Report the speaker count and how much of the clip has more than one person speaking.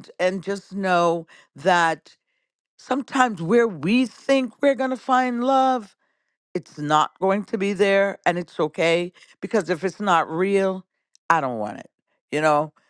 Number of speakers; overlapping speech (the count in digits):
1, no overlap